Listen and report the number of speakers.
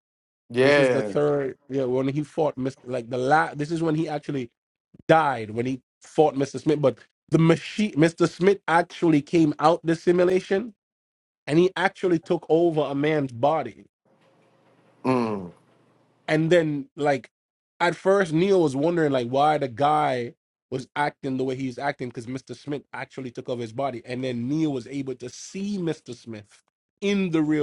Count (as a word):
two